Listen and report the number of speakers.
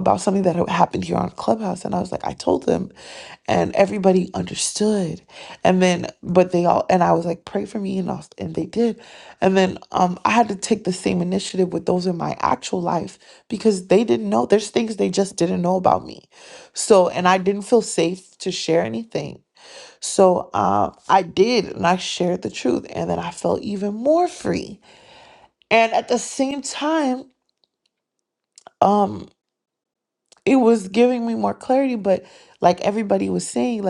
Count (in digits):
1